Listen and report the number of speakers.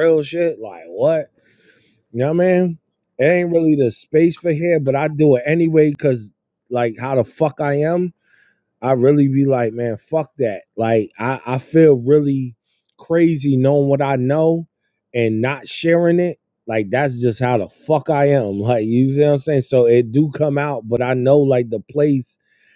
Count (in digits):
1